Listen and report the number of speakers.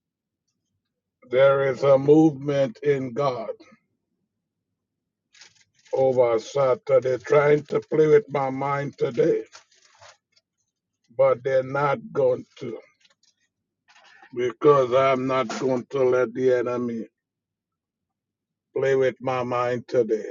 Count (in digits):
1